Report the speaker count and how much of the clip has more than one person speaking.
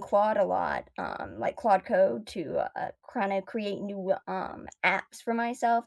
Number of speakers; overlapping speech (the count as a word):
one, no overlap